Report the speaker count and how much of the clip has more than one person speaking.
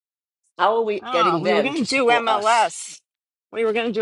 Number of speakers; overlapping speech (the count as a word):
two, about 40%